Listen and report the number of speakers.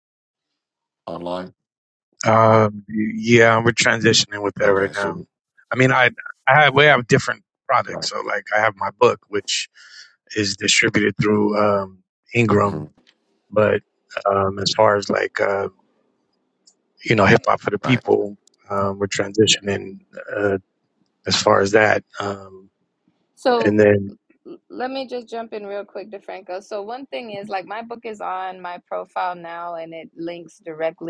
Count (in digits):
3